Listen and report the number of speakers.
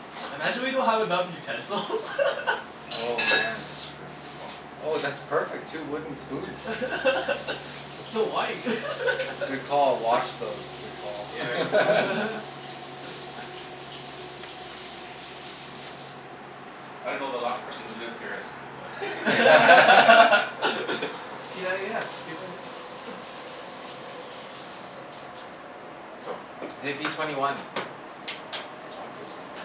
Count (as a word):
three